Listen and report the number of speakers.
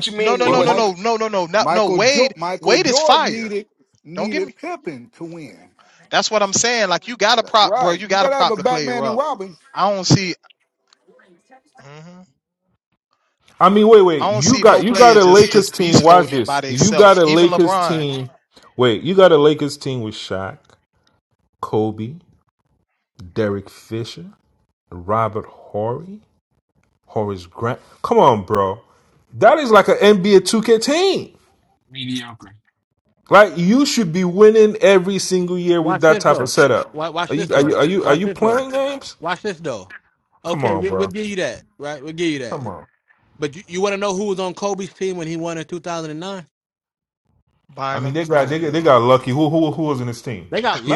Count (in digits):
5